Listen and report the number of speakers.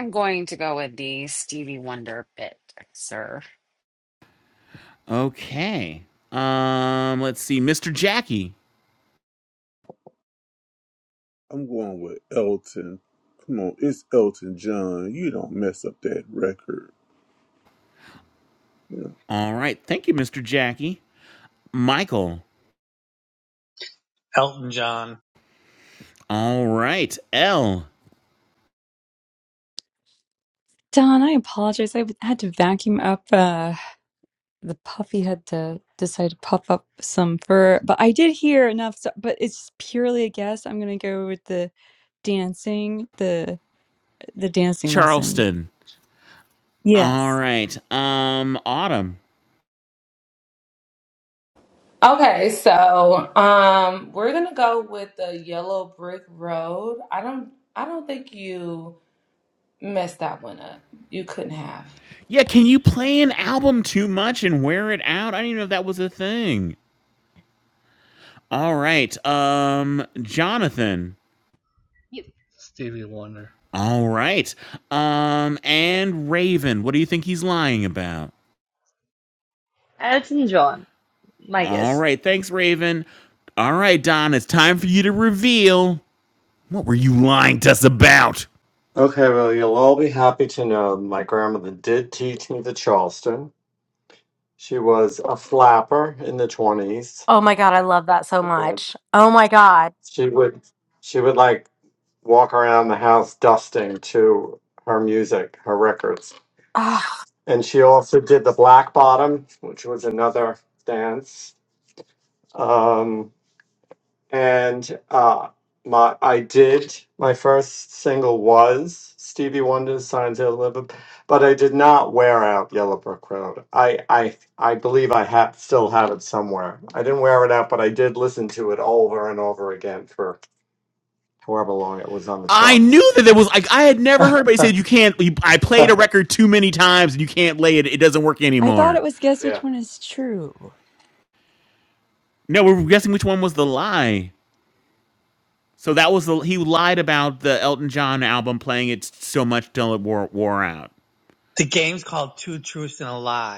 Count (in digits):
10